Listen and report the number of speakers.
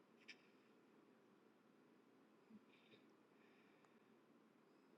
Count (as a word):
zero